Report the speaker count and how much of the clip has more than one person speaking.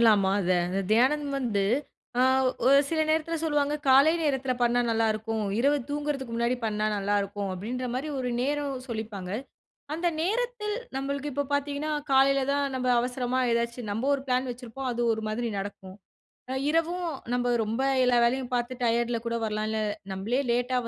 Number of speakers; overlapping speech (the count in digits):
1, no overlap